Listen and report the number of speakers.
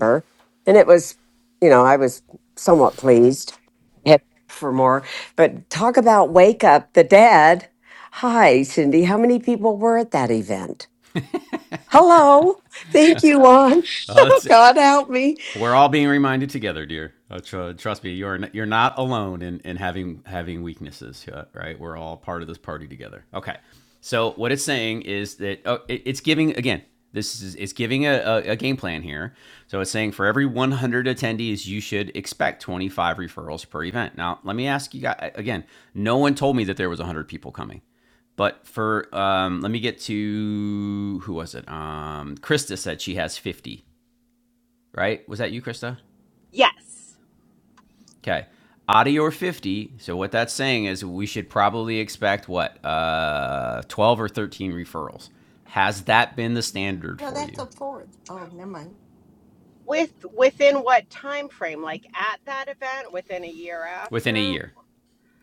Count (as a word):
four